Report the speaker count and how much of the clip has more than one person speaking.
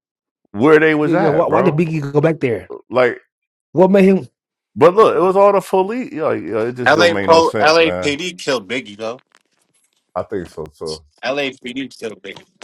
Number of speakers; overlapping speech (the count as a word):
three, about 16%